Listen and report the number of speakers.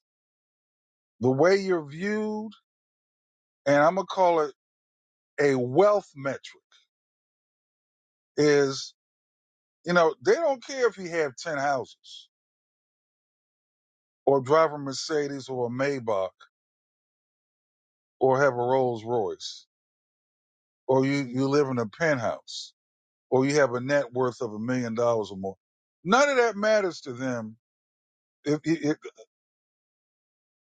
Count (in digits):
1